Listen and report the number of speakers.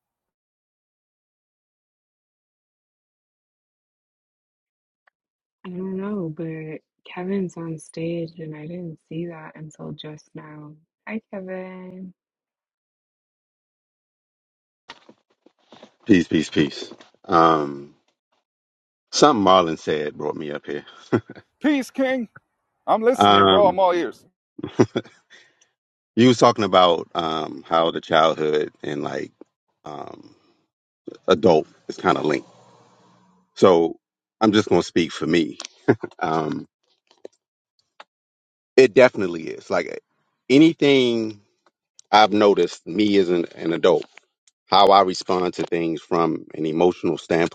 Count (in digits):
3